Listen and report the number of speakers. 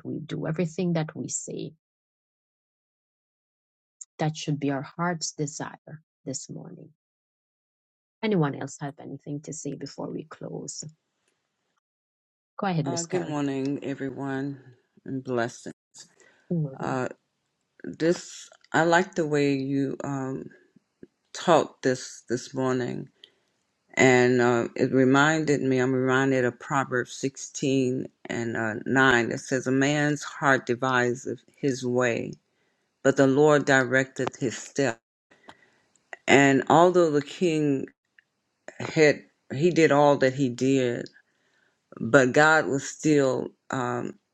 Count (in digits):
2